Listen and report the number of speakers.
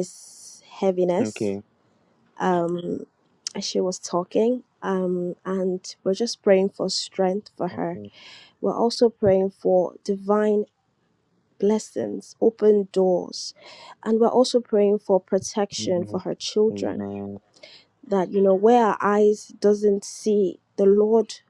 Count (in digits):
2